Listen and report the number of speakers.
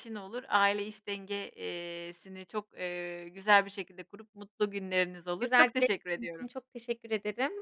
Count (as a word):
two